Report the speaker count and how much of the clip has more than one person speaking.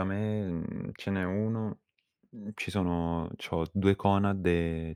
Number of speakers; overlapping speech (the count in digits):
1, no overlap